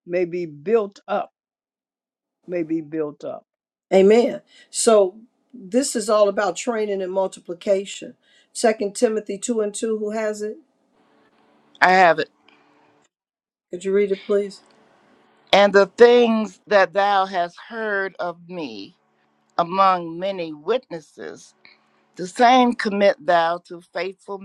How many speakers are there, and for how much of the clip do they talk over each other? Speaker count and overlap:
3, no overlap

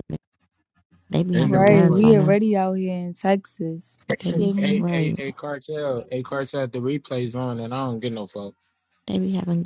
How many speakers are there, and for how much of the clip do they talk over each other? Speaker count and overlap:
3, about 21%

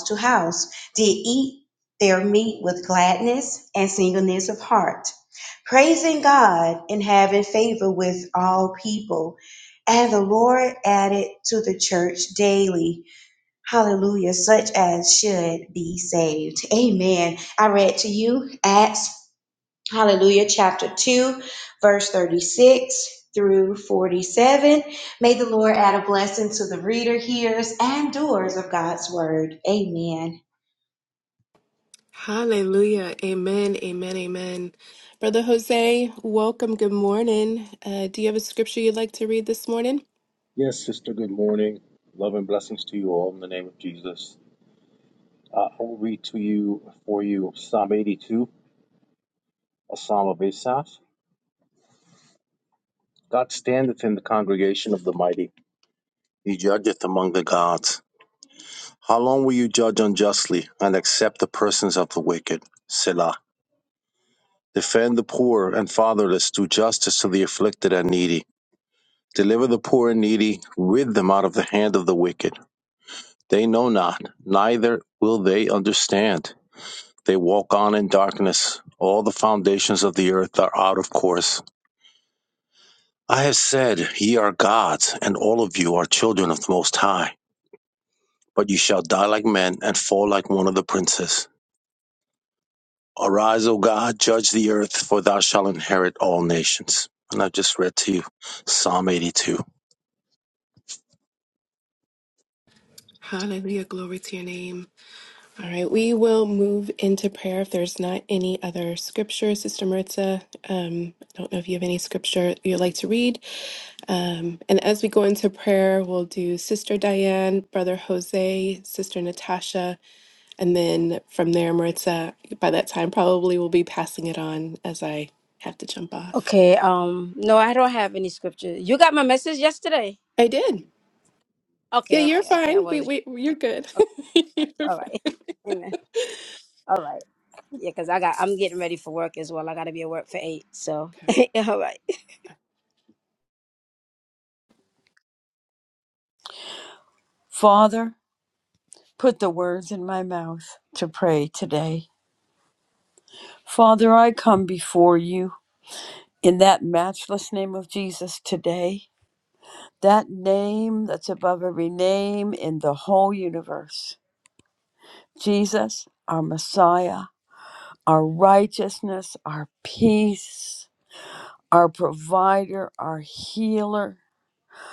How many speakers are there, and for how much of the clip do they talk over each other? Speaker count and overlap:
5, about 1%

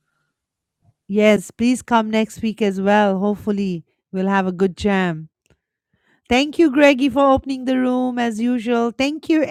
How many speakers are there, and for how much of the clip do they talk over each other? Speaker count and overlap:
1, no overlap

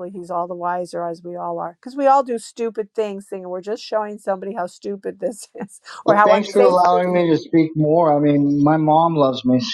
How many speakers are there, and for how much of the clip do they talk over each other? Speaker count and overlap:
2, about 11%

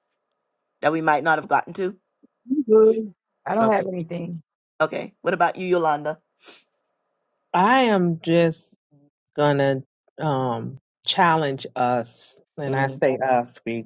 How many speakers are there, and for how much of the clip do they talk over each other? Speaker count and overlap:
3, about 3%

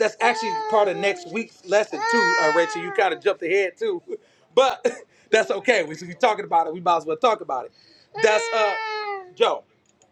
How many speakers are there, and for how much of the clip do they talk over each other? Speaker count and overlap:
1, no overlap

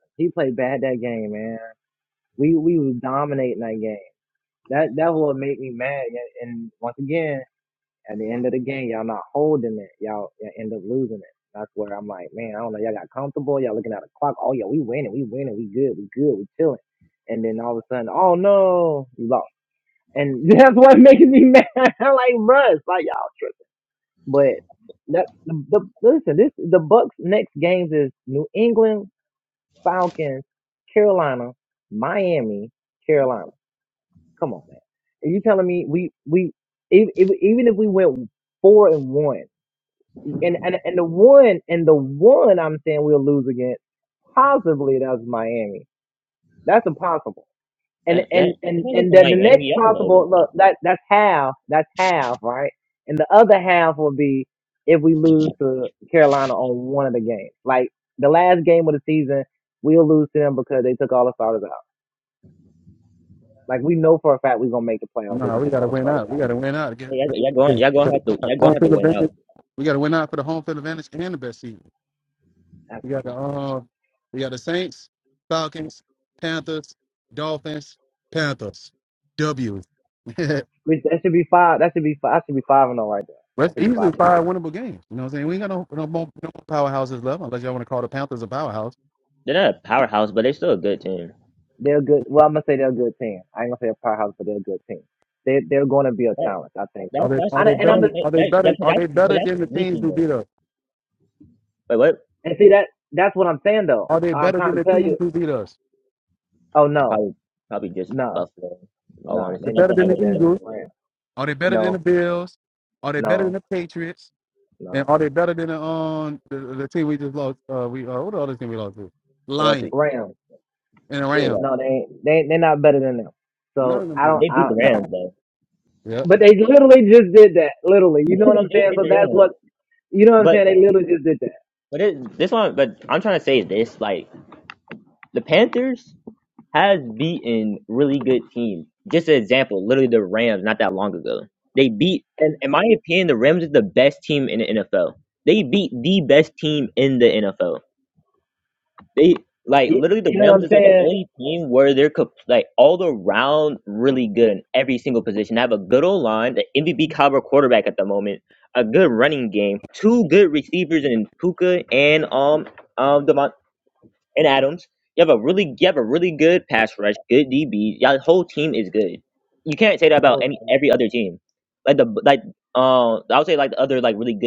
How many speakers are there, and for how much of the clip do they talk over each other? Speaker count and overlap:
3, about 10%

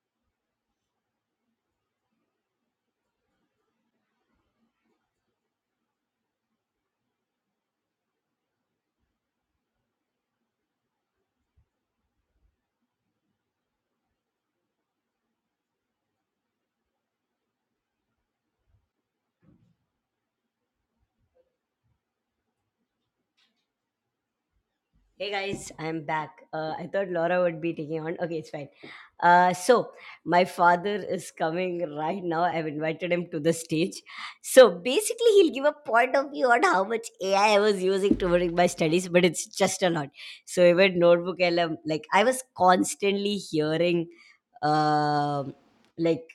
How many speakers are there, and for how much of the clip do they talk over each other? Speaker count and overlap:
1, no overlap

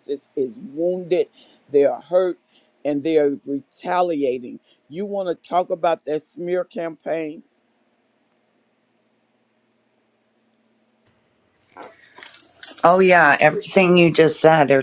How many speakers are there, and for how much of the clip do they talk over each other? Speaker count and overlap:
2, no overlap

